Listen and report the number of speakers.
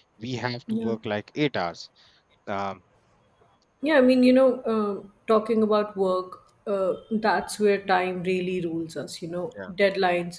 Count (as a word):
two